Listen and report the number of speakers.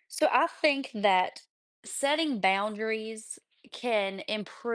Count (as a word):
one